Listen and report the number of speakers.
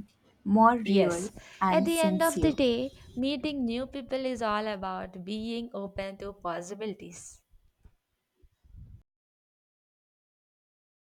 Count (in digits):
2